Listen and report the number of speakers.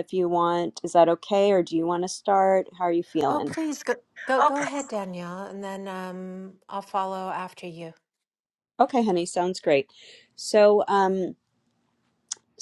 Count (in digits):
2